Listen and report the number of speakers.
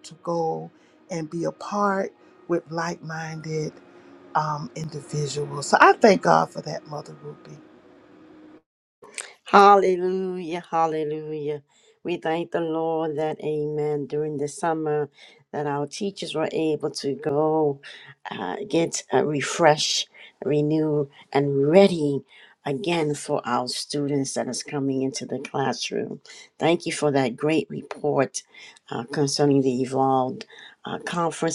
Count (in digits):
2